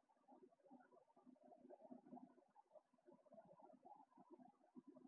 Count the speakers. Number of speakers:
0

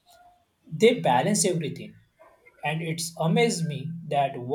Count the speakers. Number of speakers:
1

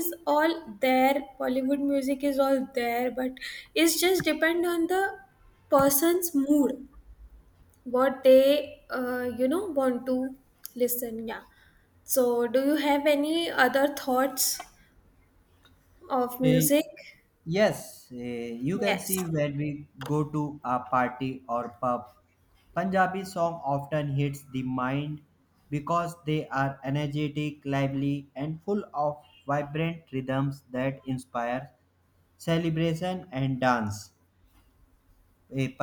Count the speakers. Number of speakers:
2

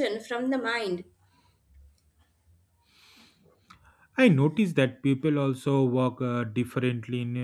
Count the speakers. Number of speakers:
2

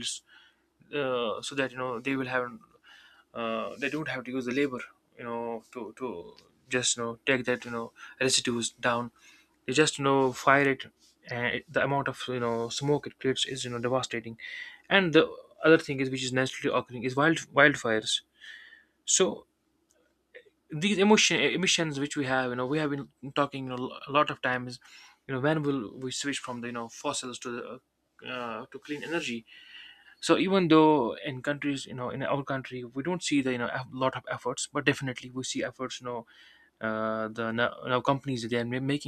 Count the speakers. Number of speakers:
1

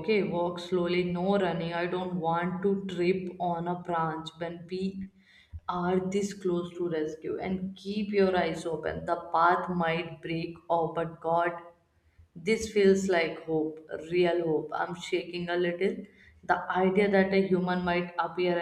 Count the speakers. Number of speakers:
1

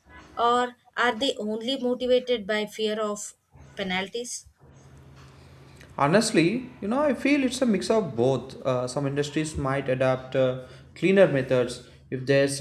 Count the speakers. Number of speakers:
2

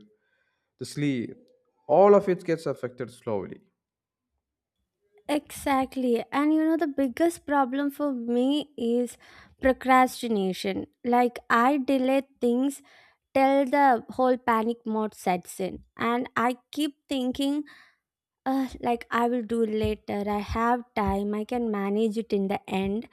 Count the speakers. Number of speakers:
2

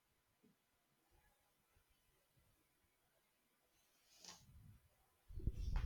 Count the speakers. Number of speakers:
0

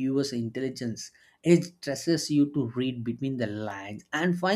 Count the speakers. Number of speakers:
1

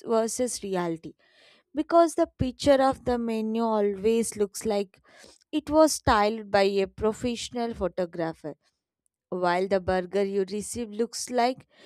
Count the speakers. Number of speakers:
1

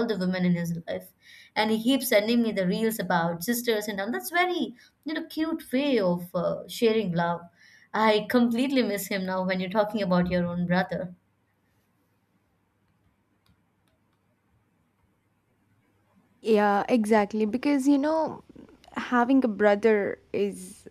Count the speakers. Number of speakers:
2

